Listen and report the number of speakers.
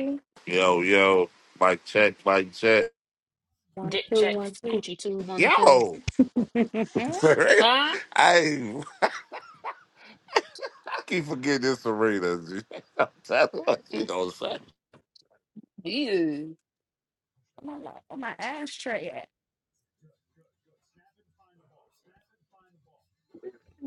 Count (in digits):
3